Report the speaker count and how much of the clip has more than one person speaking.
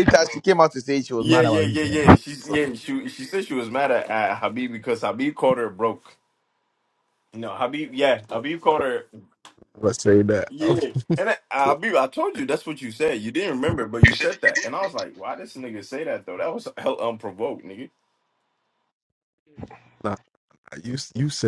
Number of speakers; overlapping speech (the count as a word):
three, about 2%